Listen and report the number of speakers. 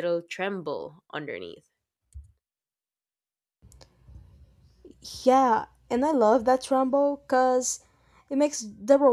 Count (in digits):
2